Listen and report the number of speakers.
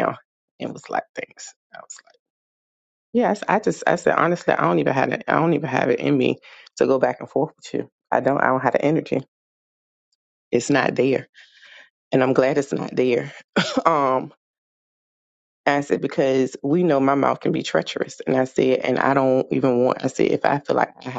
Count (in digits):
1